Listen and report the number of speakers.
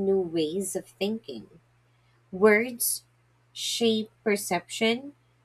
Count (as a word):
one